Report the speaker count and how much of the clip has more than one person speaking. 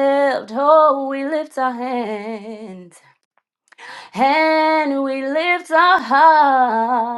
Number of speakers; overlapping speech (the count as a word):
one, no overlap